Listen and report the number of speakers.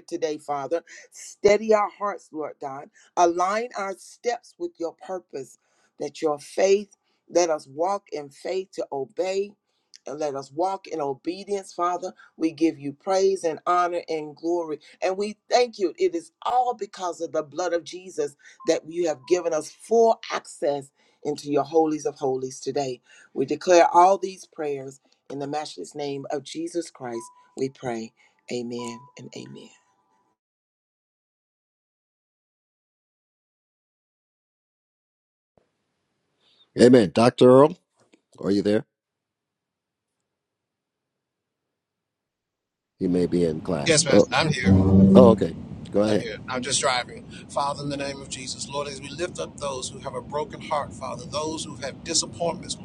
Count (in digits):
3